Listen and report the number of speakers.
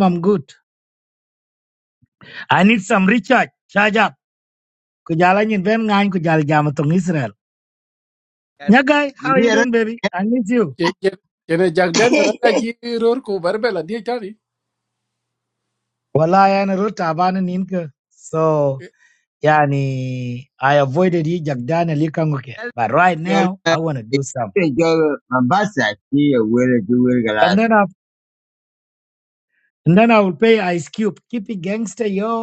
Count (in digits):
3